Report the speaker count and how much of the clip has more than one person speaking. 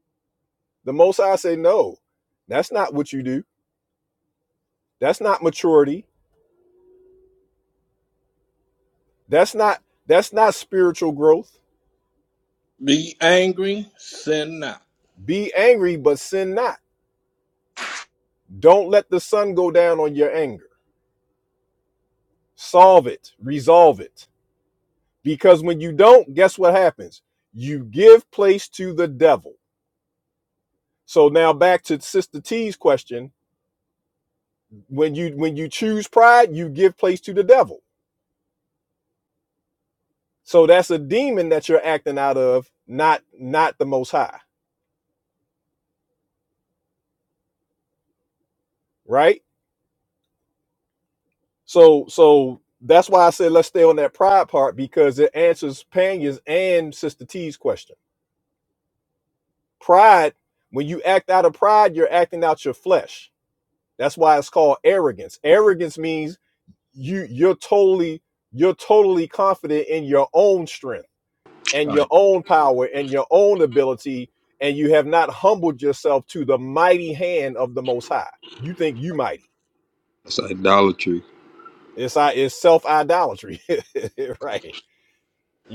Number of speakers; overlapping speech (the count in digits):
3, under 1%